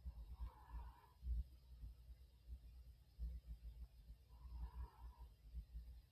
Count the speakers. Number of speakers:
zero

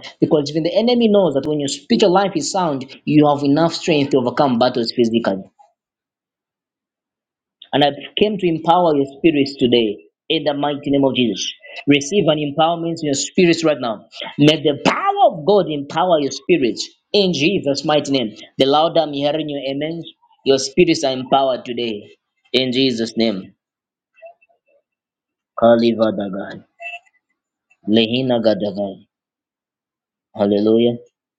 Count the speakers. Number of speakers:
one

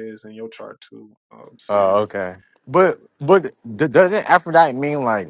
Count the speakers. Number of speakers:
two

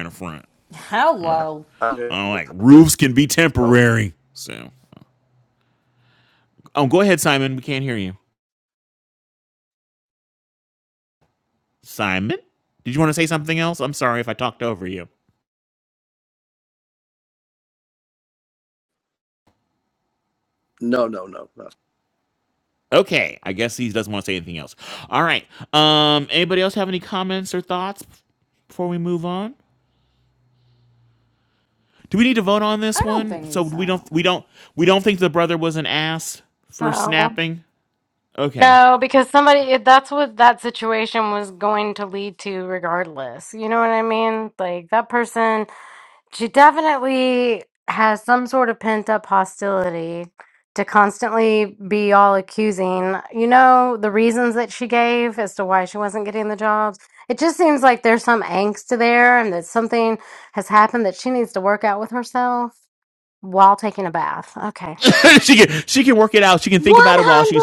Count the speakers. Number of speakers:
four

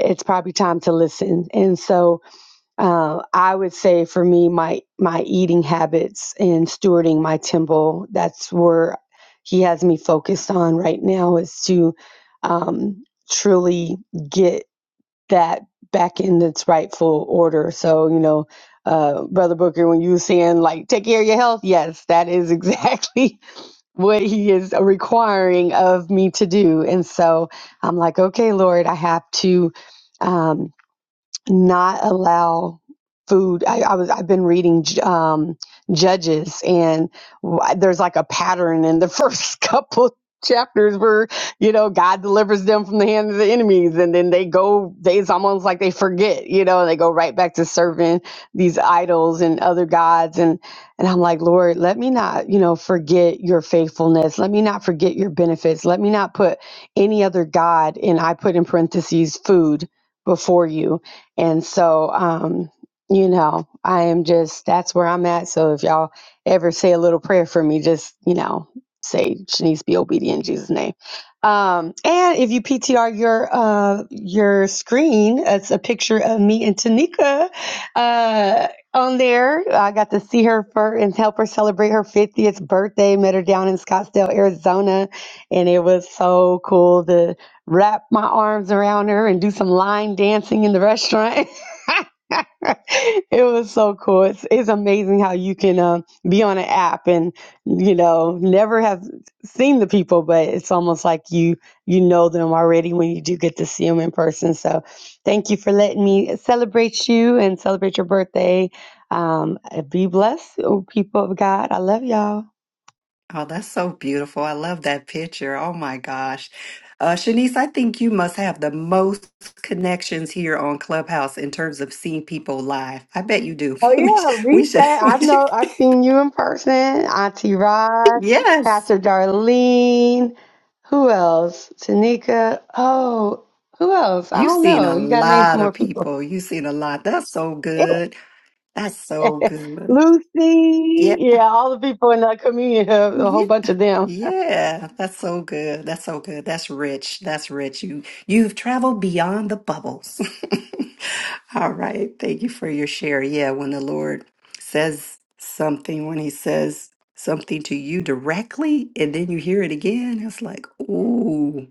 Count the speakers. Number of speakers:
two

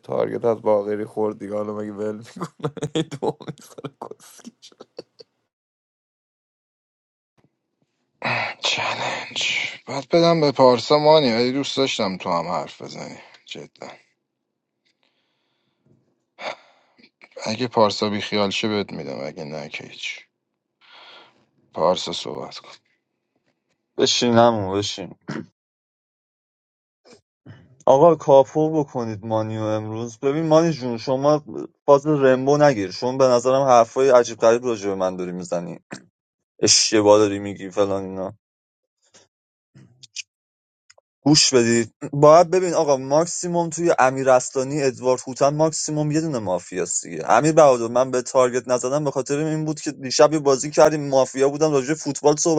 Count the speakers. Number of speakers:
three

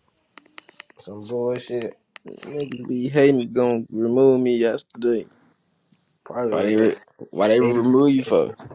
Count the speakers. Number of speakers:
three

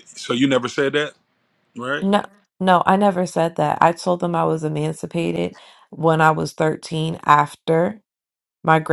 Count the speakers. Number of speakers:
two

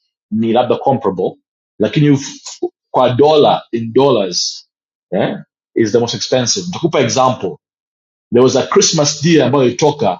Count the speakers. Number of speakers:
one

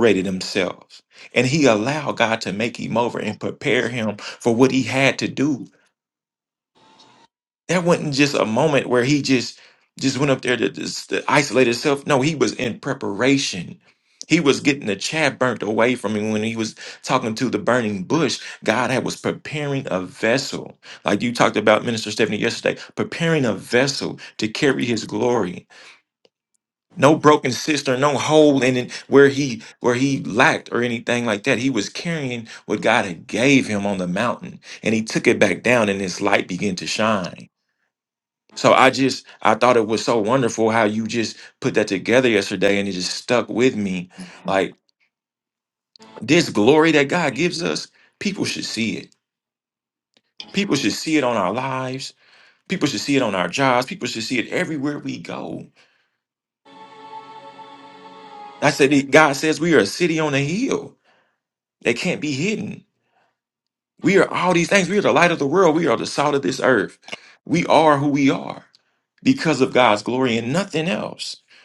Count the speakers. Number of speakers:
one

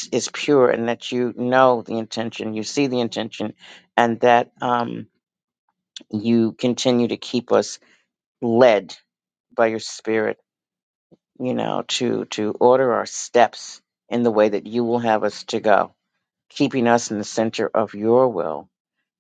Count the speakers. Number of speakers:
one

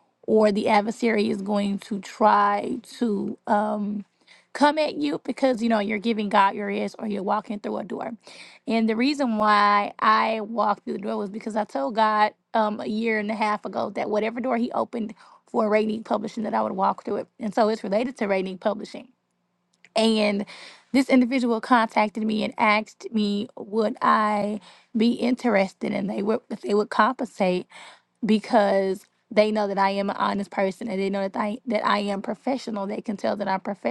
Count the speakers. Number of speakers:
one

